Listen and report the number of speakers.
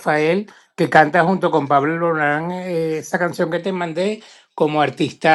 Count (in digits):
1